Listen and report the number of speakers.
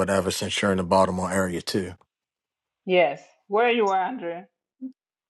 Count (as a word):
two